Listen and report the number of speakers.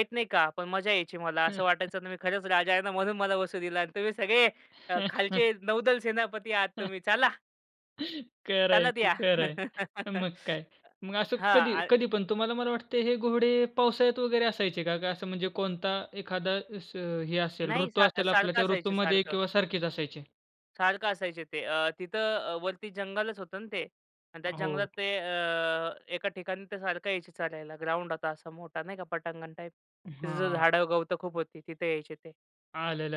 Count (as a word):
two